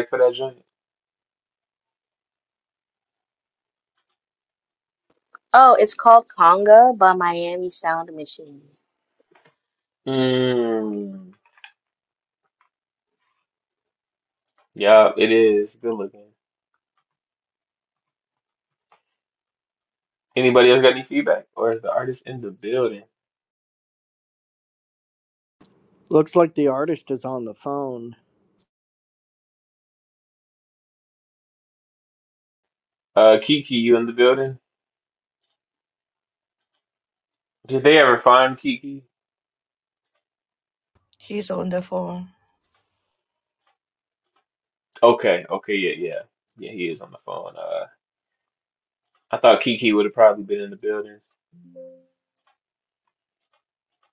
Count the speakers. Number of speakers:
4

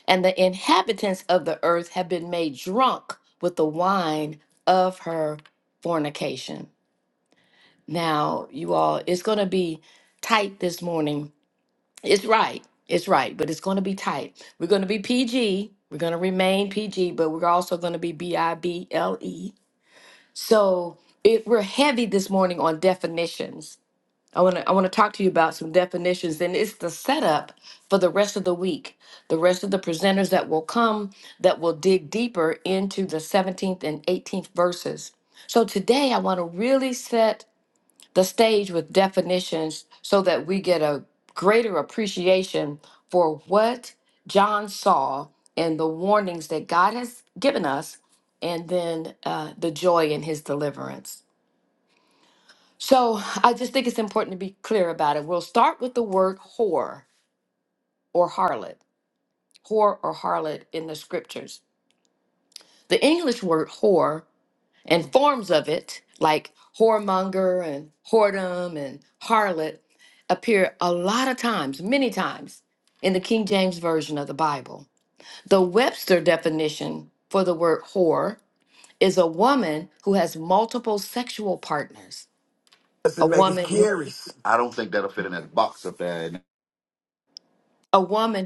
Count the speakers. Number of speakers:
2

